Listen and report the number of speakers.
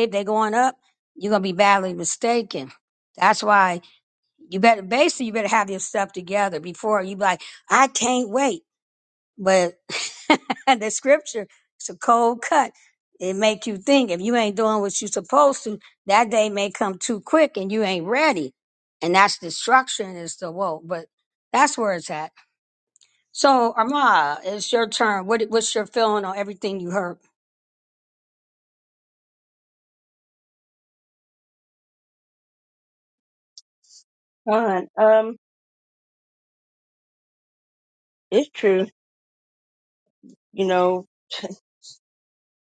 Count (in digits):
2